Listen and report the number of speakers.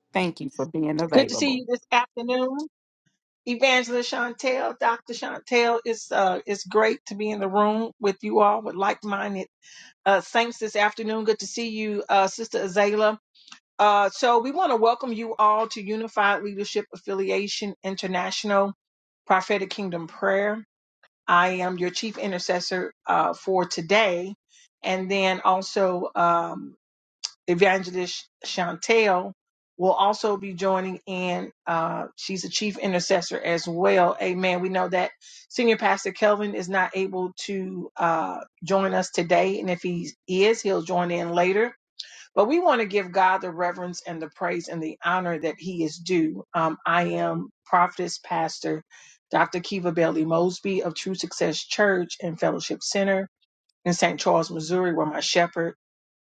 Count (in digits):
2